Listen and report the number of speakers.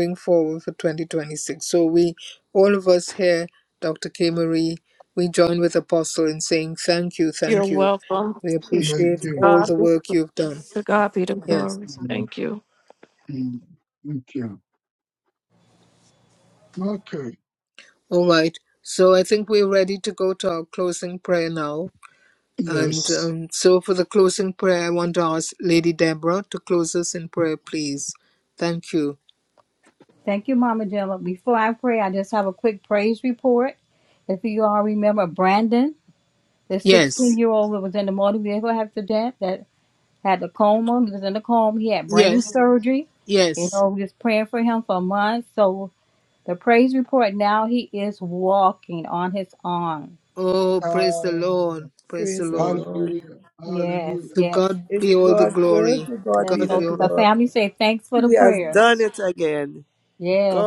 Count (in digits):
5